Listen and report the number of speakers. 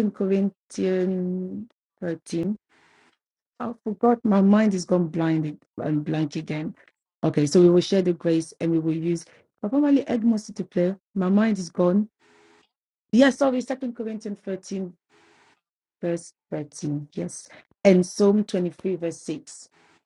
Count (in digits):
1